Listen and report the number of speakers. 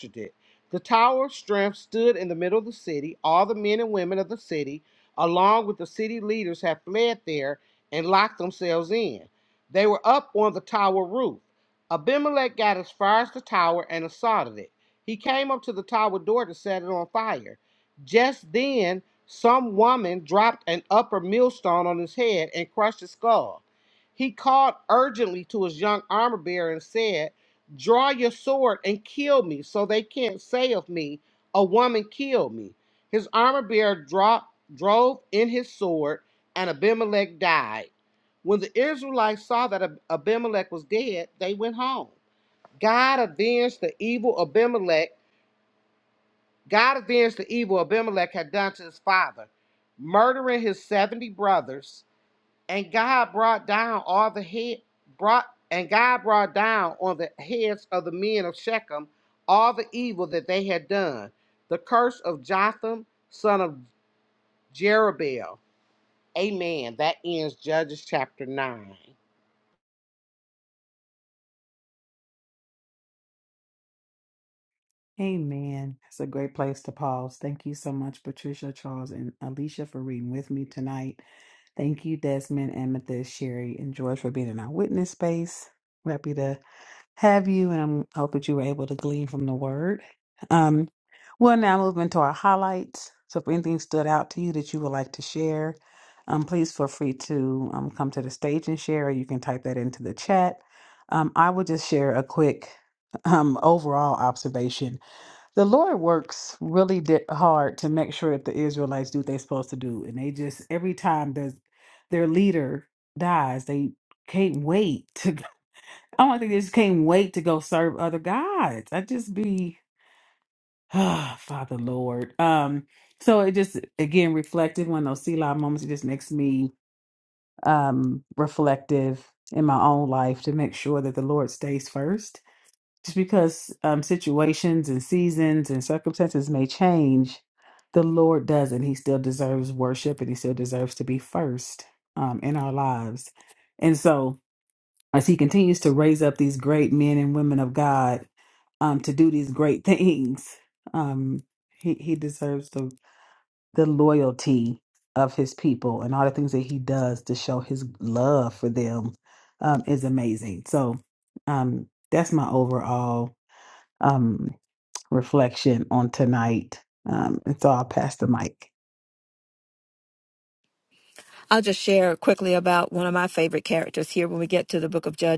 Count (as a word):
three